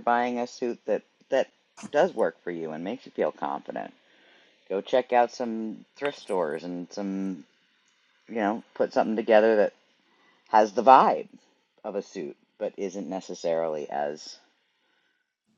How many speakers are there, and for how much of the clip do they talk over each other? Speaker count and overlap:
one, no overlap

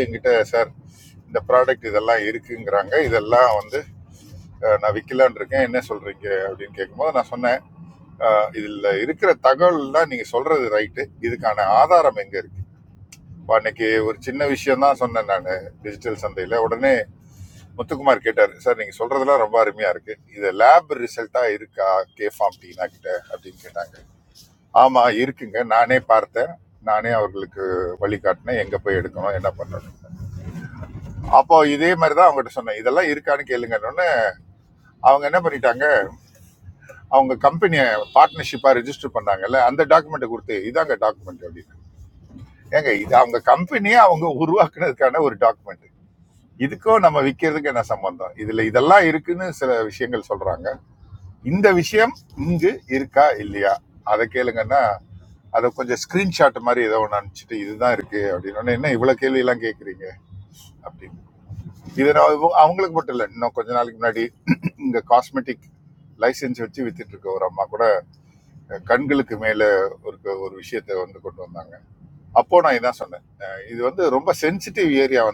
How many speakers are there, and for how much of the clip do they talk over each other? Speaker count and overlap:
one, no overlap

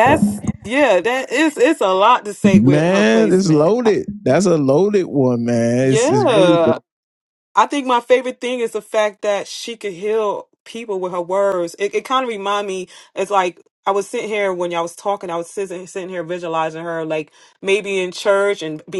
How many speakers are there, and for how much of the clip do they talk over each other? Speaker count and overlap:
two, about 11%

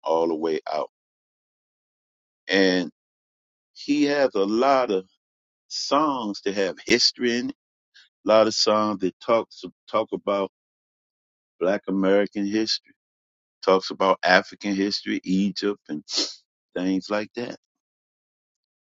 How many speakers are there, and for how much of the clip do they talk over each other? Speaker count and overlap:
one, no overlap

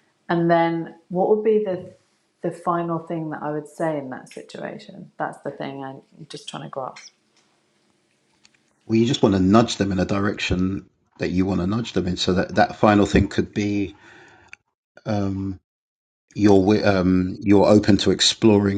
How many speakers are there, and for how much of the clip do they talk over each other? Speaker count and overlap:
two, no overlap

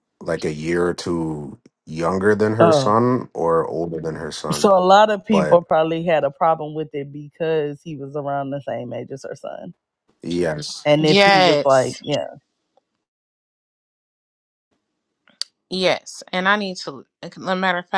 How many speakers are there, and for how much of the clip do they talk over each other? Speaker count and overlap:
three, about 8%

